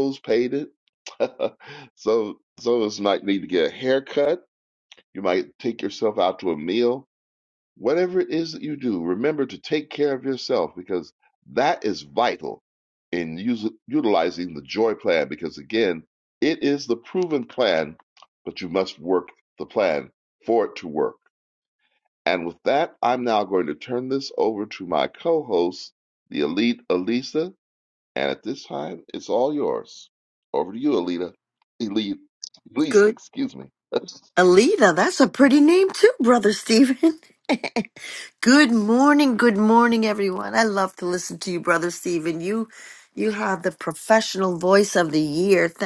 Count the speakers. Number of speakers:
2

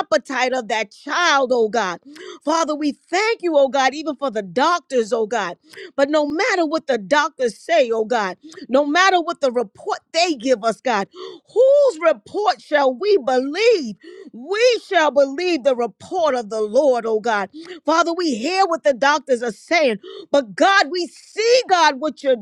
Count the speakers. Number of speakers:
1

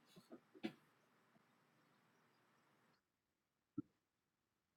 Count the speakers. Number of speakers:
0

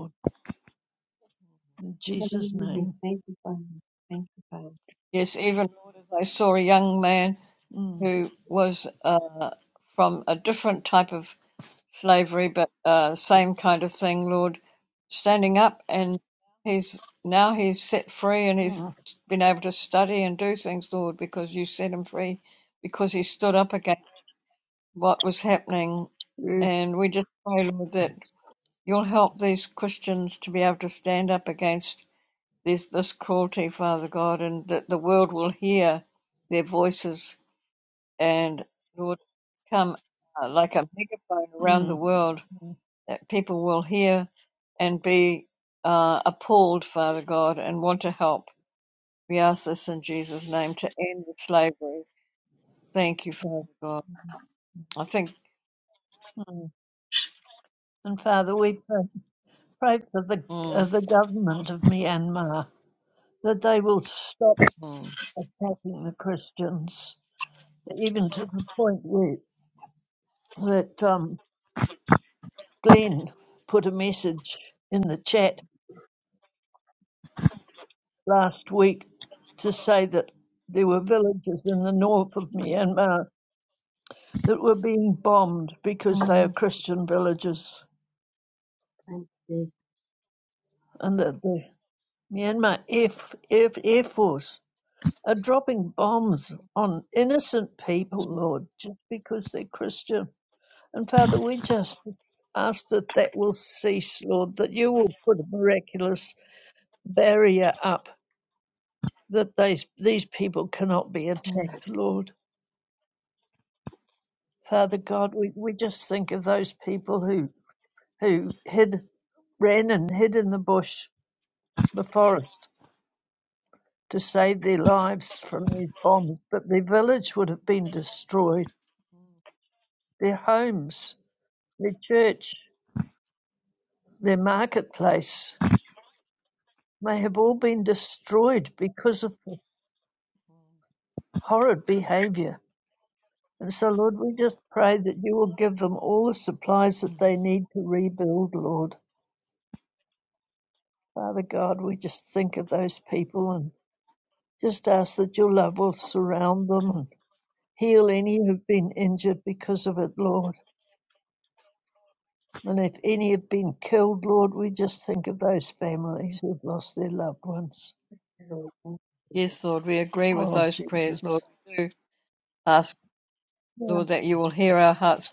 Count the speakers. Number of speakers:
3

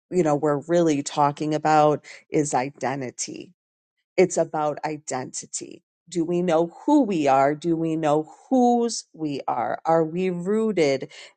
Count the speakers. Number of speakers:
1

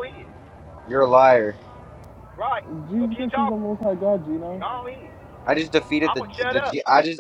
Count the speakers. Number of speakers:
3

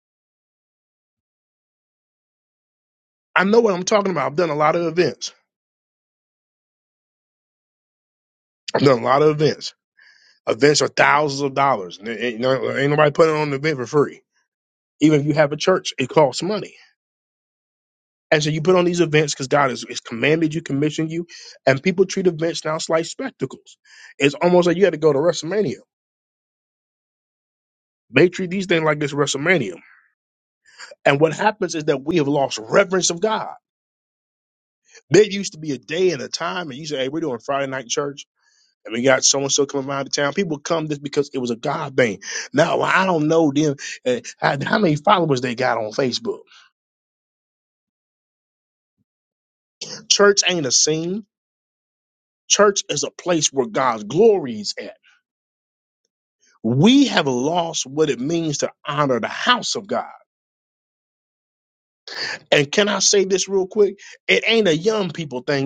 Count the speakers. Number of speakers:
1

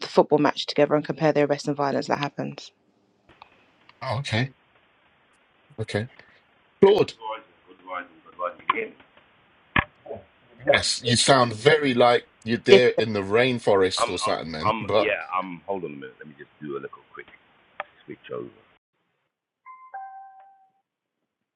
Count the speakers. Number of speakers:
3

